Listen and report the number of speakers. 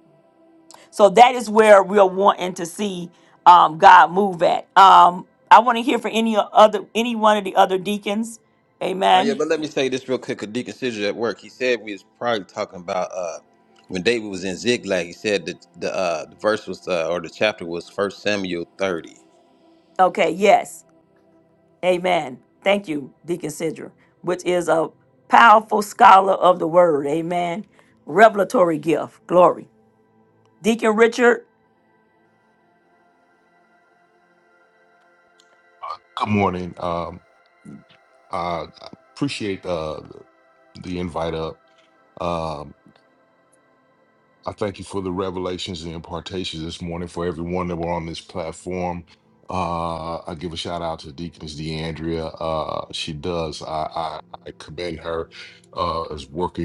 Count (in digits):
3